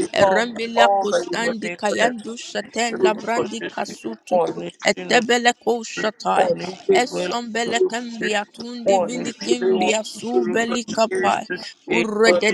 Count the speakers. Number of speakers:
2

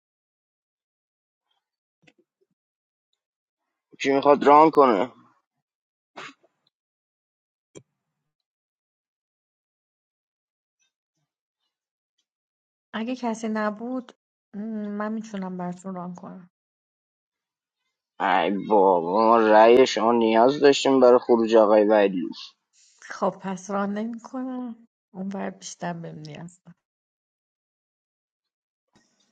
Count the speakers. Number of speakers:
2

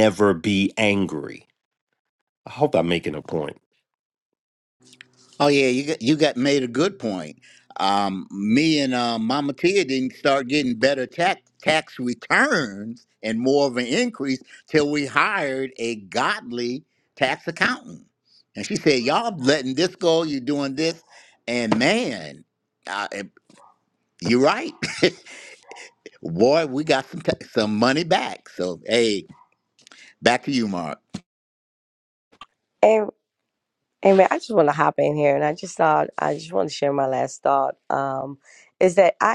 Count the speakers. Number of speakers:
3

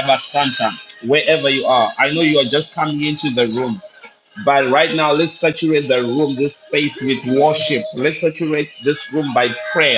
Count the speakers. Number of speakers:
1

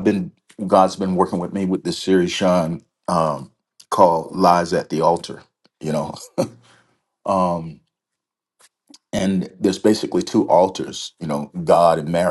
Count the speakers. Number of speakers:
1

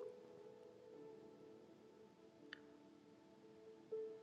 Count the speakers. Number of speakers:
0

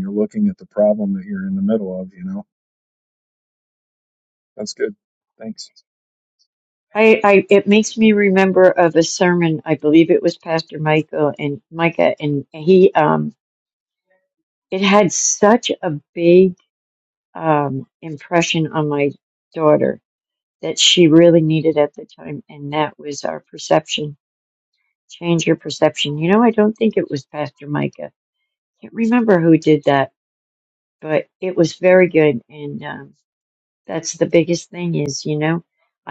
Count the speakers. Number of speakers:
2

